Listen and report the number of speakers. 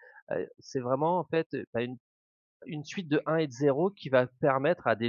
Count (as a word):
one